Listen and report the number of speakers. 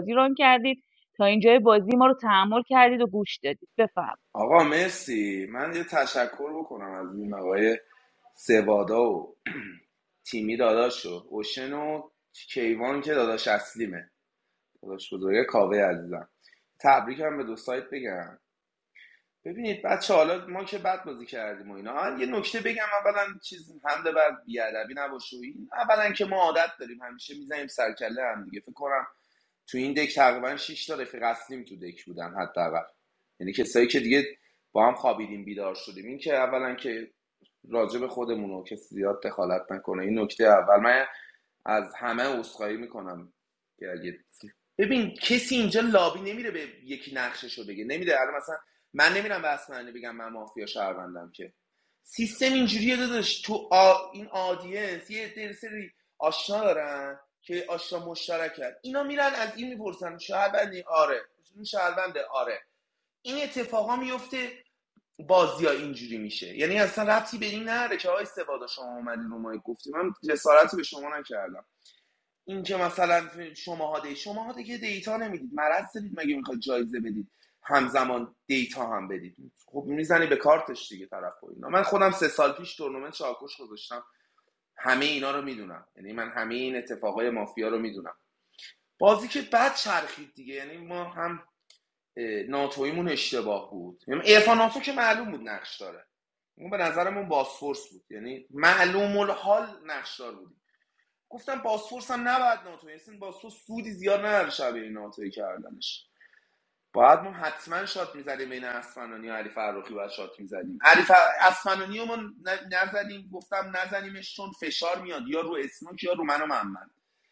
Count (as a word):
two